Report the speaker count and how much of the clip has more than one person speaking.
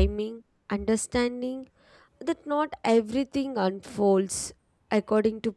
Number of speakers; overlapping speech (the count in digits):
1, no overlap